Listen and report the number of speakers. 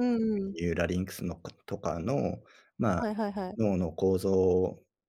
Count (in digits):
2